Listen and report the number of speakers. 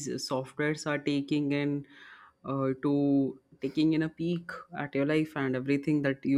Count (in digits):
1